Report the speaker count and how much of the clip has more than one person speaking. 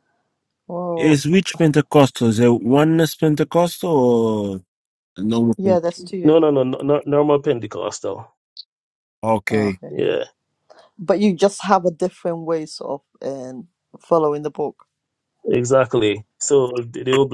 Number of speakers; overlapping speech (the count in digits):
3, about 4%